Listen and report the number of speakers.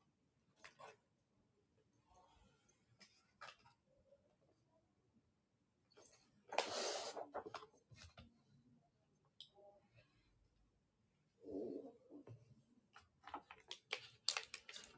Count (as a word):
zero